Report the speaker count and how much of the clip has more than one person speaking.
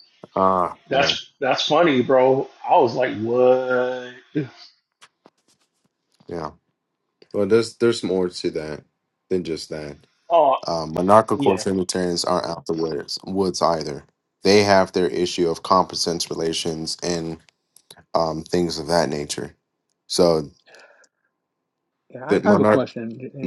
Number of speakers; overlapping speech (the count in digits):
3, about 5%